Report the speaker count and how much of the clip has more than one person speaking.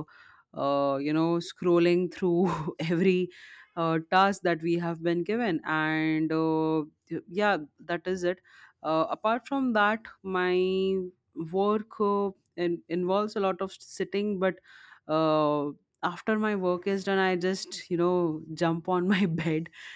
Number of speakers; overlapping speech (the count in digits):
1, no overlap